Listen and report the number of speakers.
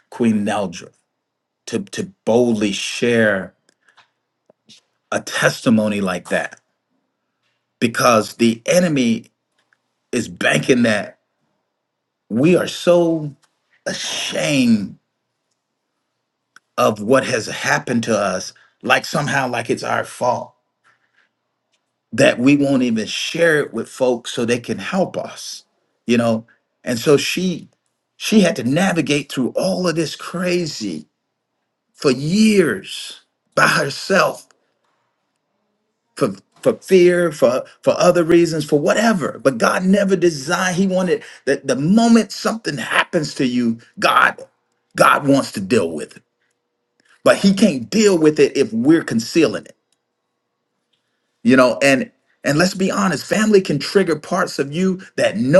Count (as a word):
one